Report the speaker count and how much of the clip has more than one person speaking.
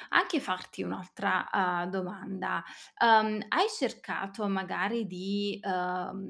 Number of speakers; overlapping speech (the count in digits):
1, no overlap